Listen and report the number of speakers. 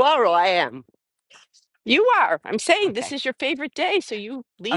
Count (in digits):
2